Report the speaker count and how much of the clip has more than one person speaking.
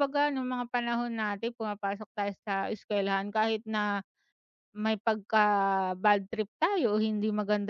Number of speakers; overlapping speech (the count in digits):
1, no overlap